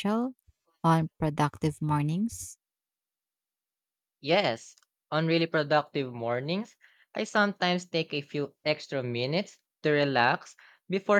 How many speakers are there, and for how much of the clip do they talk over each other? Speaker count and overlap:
two, no overlap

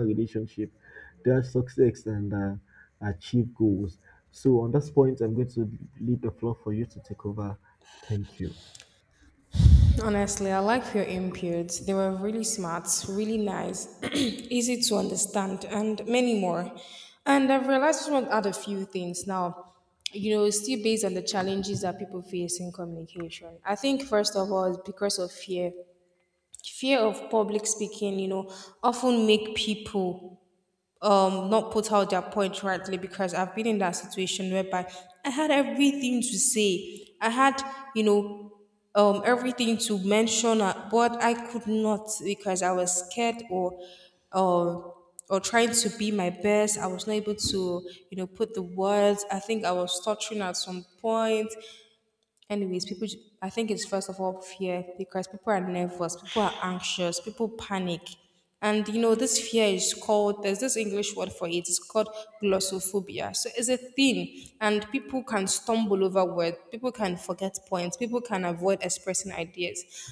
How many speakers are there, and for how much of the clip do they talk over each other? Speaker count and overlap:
two, no overlap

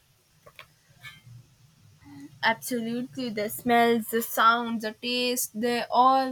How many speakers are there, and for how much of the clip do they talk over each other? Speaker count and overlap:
one, no overlap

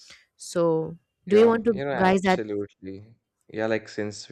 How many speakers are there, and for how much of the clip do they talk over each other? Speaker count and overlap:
two, about 25%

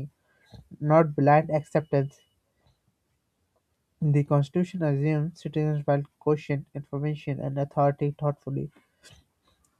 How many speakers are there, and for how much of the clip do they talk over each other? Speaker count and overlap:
one, no overlap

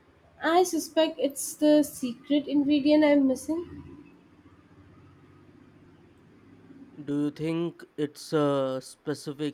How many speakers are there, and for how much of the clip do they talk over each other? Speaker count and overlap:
two, no overlap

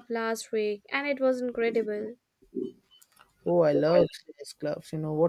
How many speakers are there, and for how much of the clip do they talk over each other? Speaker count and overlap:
two, no overlap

